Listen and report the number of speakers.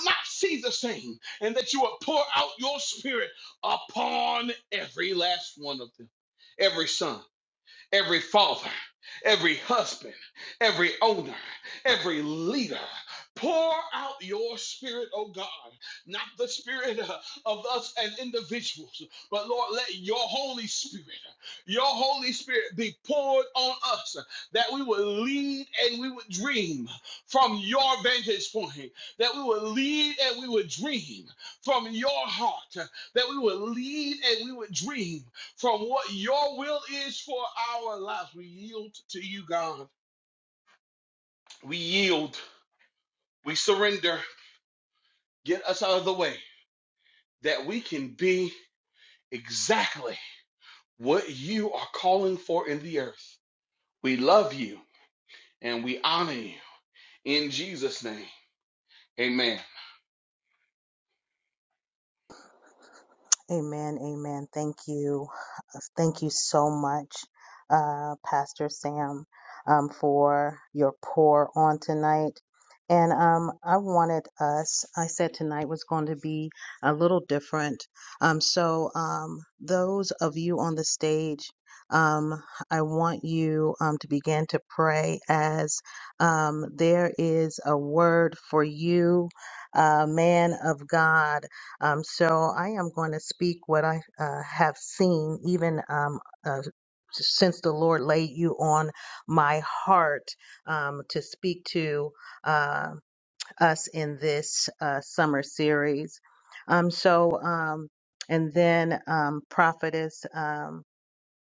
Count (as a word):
two